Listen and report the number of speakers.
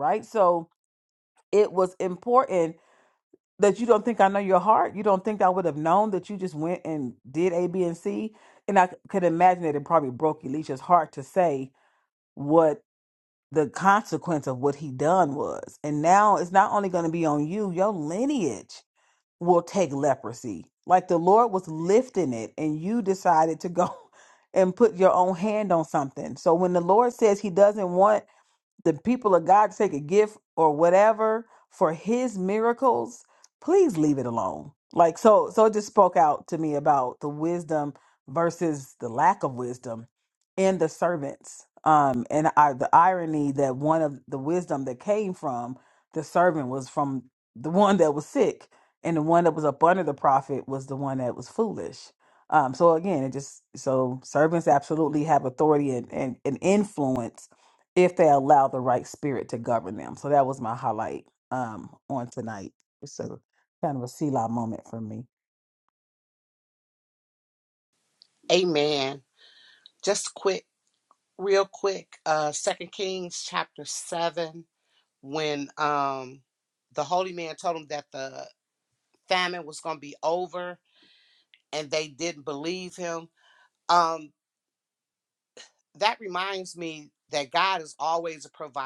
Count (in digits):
2